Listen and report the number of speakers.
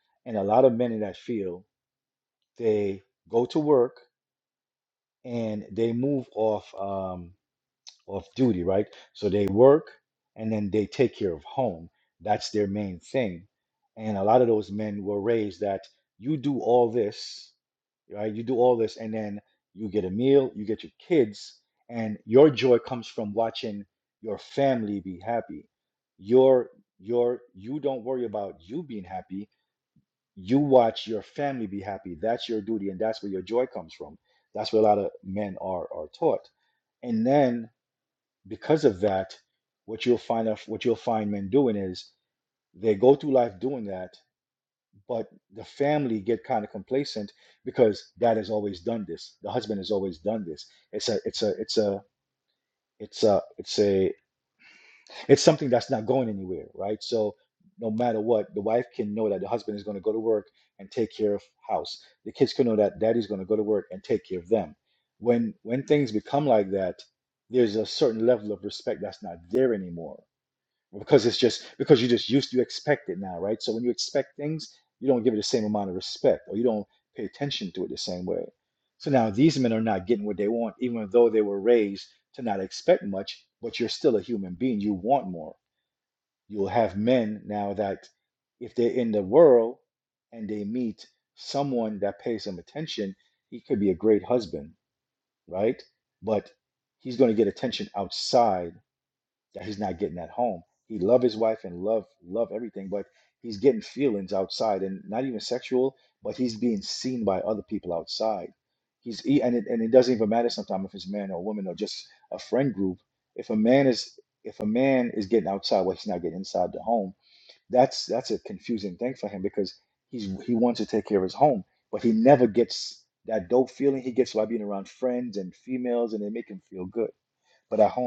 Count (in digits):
1